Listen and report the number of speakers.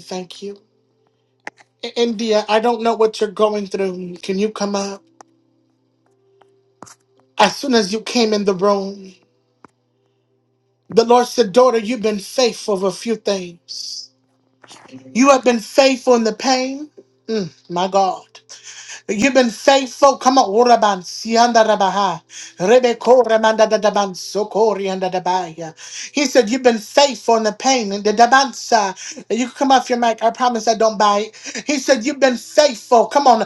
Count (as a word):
one